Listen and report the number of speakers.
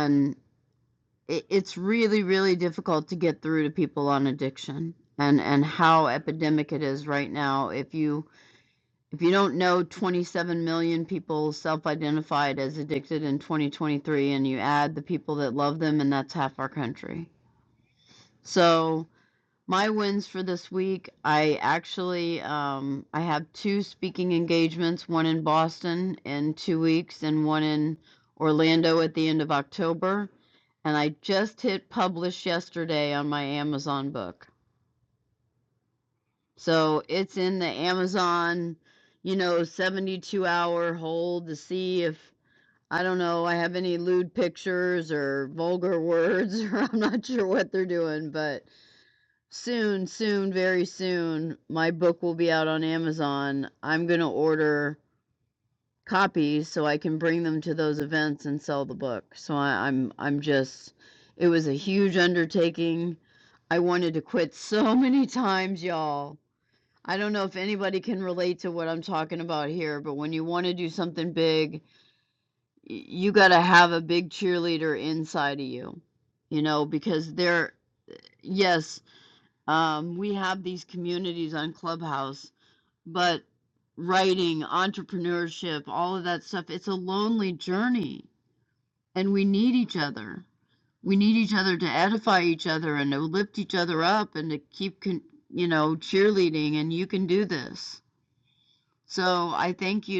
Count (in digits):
1